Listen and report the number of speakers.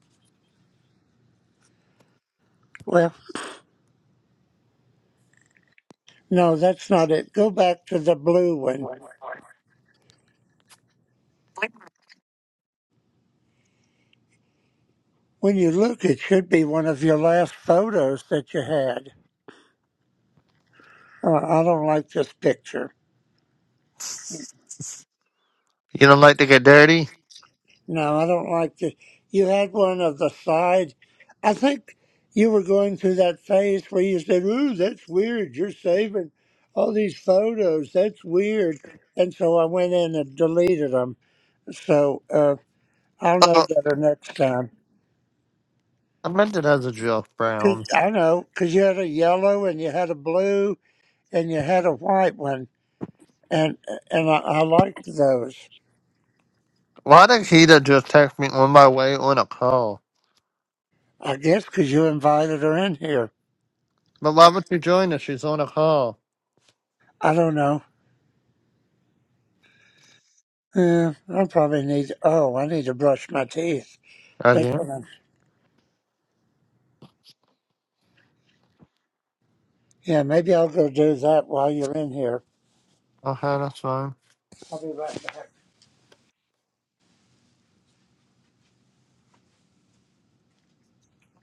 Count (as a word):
two